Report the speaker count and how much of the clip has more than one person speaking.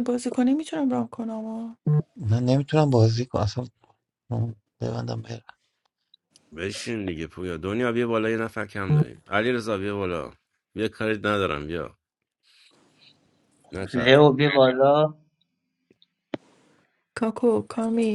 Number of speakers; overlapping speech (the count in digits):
4, about 2%